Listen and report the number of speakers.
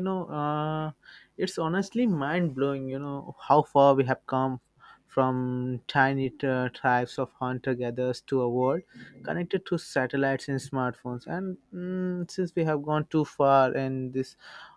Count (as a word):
one